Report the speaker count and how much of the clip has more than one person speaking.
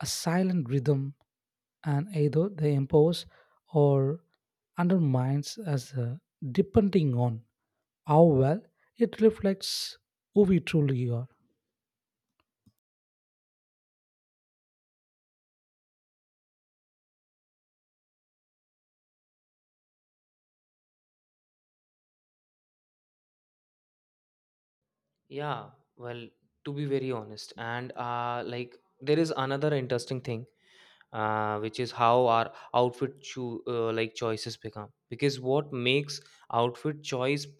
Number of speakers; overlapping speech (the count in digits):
2, no overlap